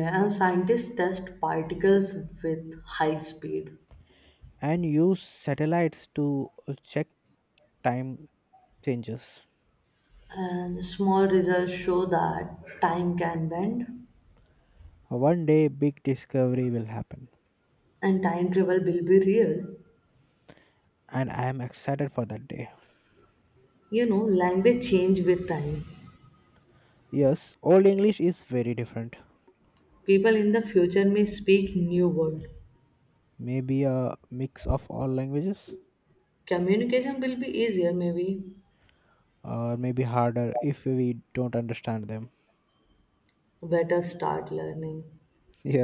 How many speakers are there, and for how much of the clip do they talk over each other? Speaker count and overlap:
two, no overlap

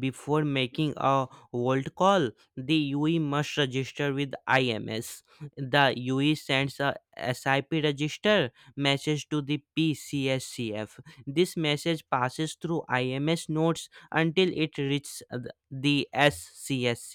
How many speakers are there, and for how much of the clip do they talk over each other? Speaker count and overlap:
one, no overlap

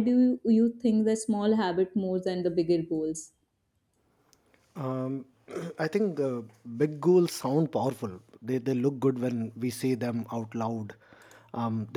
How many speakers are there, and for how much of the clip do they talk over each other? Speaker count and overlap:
two, no overlap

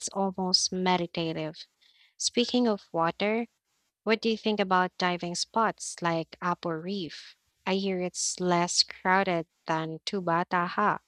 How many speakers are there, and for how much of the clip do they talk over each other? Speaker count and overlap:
one, no overlap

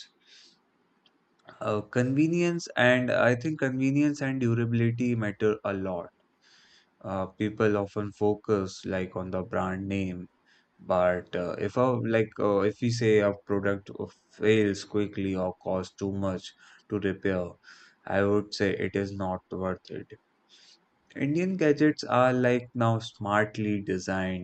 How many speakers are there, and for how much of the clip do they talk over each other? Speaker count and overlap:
one, no overlap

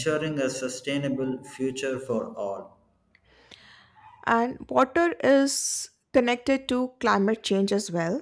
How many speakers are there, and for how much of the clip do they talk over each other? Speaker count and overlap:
two, no overlap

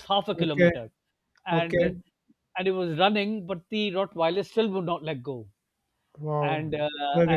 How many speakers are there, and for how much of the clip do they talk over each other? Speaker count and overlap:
two, about 15%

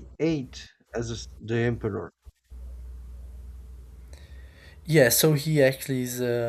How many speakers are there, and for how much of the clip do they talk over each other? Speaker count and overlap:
two, no overlap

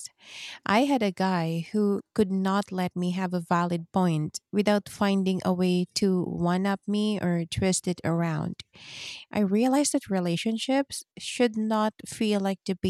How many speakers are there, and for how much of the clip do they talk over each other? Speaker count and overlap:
one, no overlap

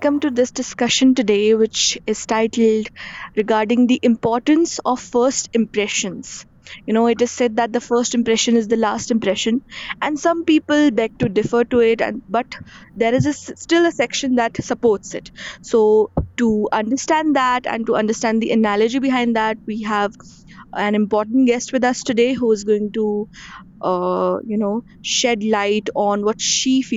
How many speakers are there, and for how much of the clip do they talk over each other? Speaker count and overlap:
one, no overlap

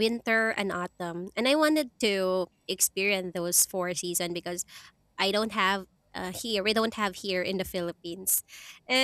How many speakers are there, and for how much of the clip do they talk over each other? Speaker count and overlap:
one, no overlap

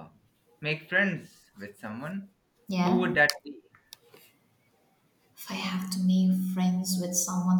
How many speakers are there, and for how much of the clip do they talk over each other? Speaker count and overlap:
two, about 4%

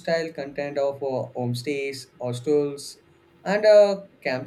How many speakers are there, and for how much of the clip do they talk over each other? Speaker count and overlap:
one, no overlap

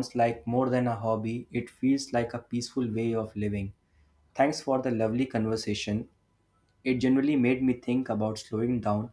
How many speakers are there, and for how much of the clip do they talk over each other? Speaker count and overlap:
one, no overlap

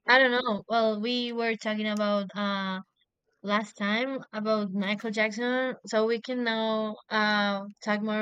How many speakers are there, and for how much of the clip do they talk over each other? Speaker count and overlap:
one, no overlap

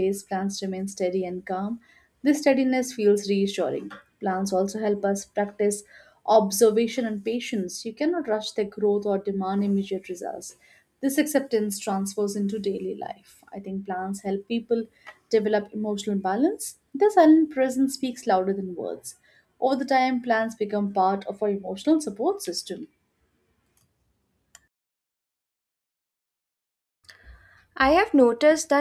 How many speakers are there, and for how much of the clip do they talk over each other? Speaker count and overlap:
two, no overlap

